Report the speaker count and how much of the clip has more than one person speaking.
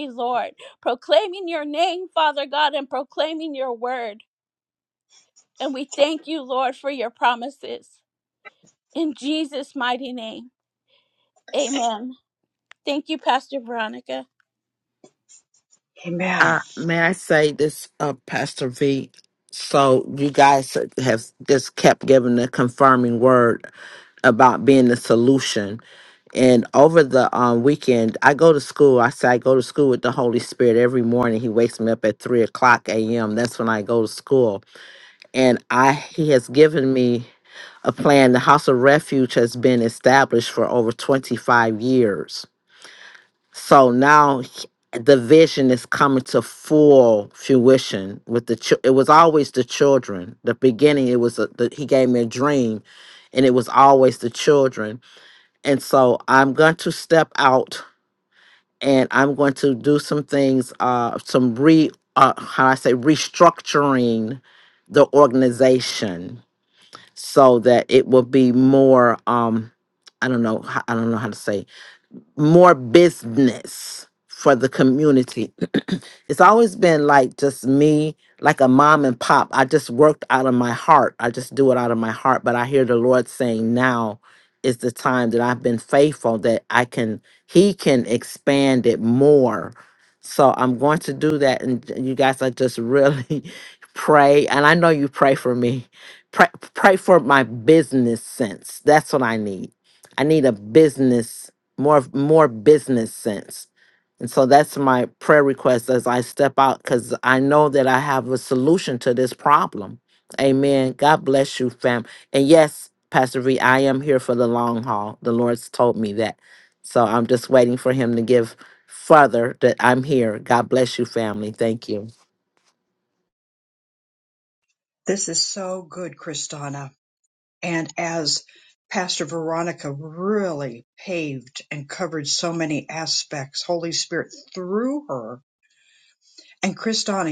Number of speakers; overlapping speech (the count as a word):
three, under 1%